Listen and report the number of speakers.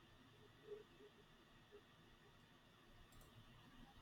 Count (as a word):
zero